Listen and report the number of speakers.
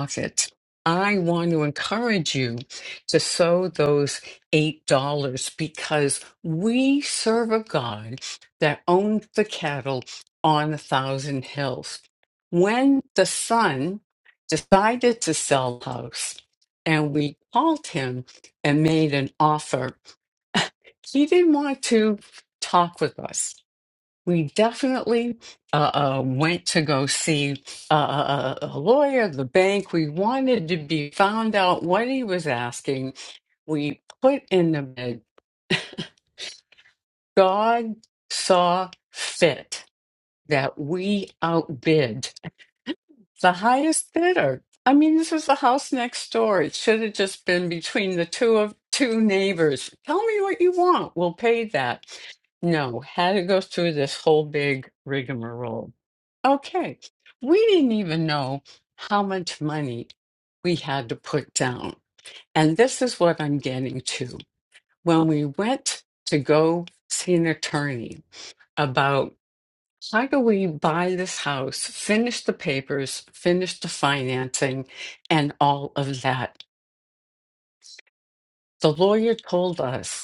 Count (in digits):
1